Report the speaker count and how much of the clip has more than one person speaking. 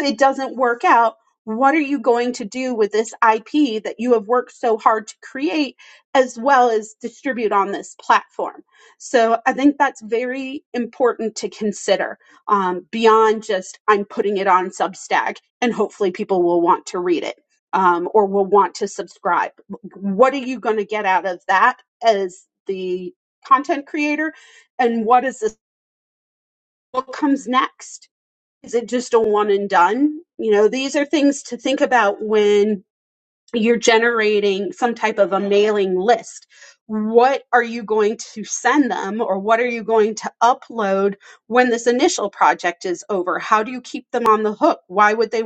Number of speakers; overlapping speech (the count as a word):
one, no overlap